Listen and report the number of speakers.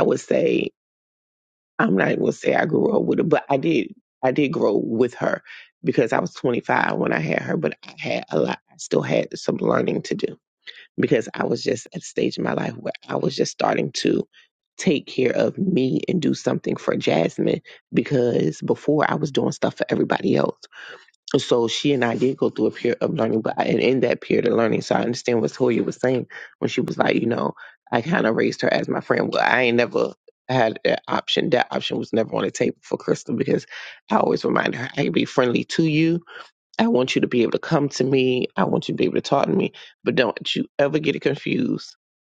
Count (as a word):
one